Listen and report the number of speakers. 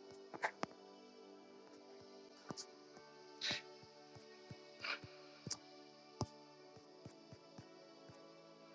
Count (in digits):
0